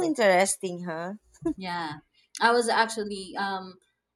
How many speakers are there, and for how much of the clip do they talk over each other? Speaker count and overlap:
two, no overlap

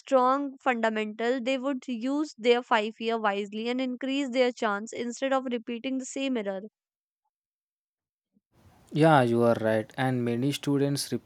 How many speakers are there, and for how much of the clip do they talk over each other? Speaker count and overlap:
two, no overlap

